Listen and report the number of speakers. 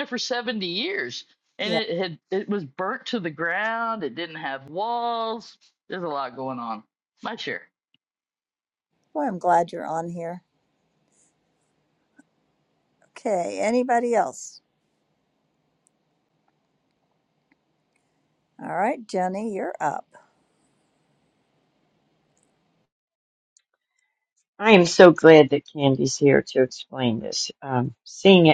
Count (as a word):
three